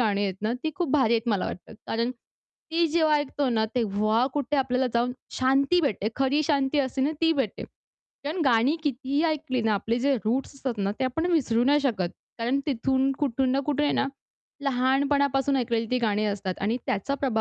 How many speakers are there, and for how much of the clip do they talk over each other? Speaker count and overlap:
1, no overlap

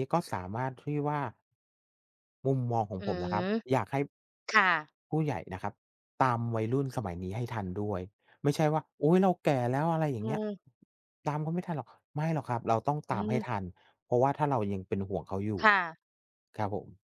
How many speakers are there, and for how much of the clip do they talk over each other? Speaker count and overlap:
2, about 5%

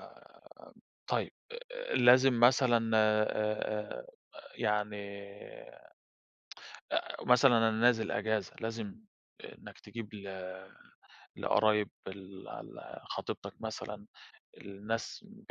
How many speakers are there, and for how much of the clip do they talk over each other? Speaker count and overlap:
1, no overlap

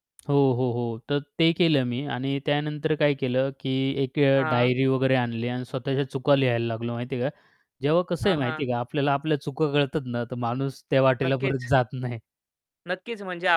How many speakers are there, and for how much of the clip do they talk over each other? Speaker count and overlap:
2, about 9%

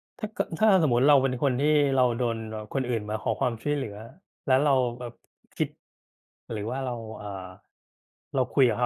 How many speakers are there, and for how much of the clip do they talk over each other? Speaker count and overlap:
1, no overlap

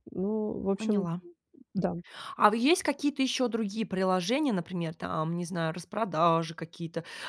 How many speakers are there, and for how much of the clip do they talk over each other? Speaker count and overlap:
2, about 4%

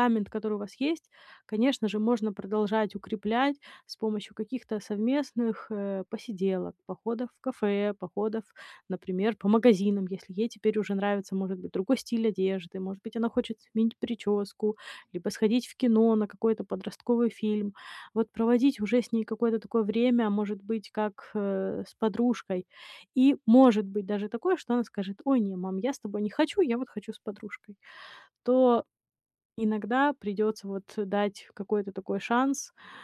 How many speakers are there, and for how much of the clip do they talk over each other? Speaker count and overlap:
1, no overlap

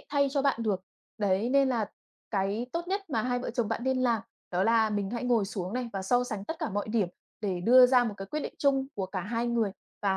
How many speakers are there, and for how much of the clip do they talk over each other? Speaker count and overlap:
1, no overlap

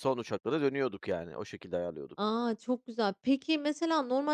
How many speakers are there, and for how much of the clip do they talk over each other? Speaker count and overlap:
2, about 1%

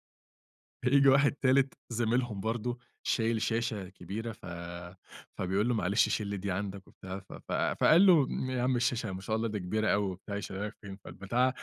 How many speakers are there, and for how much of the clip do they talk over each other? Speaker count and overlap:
1, no overlap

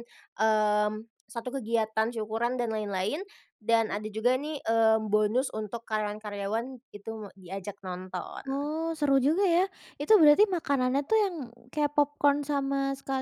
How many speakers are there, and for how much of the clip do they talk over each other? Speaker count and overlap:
2, about 1%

